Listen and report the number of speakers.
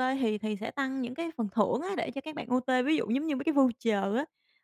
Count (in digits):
1